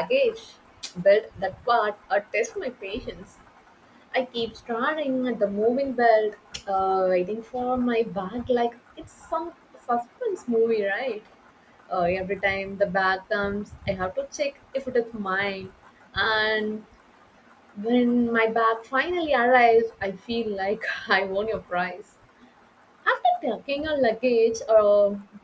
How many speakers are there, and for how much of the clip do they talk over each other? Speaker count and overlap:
one, no overlap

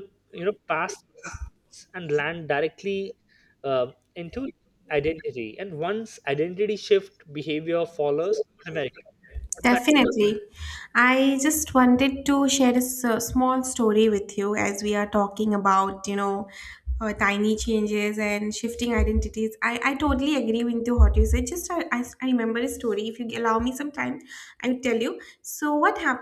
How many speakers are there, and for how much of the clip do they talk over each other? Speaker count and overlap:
two, about 1%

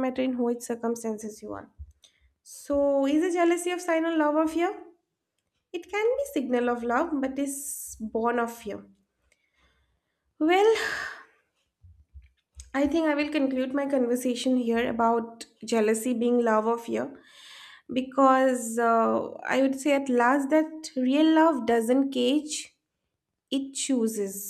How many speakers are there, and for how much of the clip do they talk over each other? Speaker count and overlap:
one, no overlap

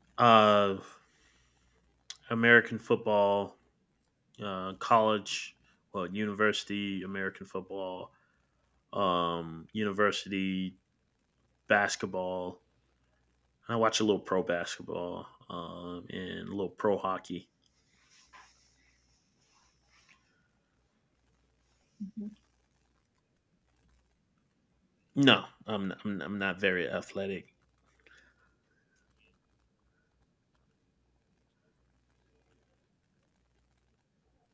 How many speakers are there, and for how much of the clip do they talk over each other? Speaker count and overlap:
one, no overlap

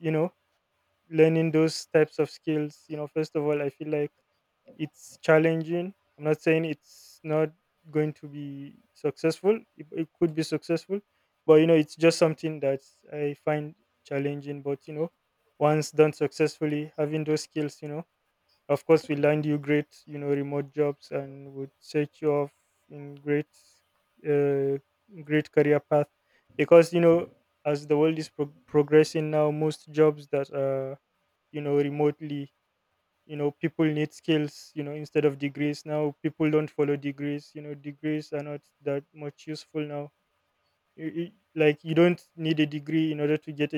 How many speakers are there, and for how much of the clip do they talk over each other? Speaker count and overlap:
one, no overlap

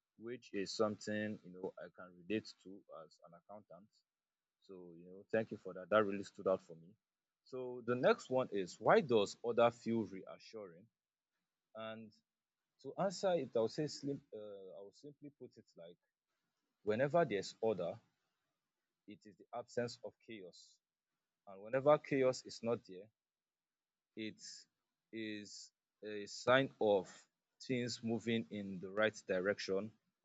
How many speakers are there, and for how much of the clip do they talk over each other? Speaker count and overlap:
one, no overlap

